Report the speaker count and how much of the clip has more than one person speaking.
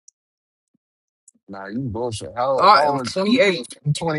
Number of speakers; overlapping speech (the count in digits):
2, about 13%